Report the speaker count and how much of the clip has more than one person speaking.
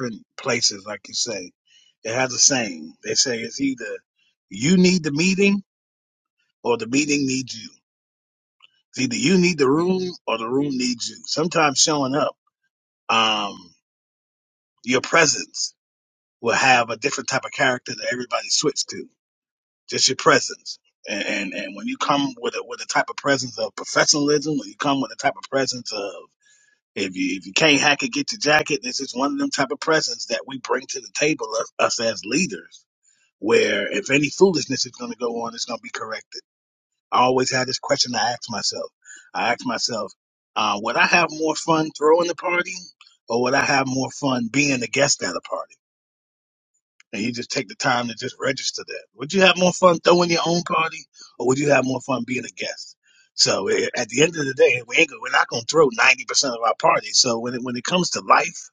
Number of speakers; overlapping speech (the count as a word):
one, no overlap